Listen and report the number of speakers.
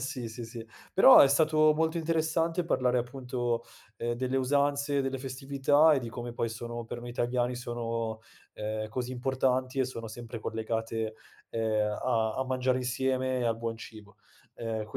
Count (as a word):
one